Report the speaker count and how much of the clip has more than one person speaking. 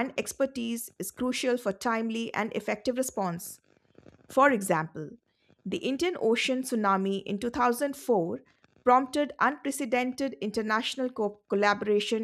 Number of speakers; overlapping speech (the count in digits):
1, no overlap